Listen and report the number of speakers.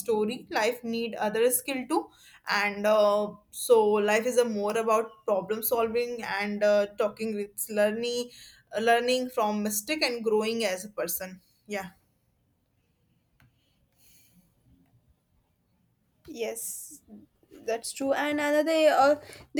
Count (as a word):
two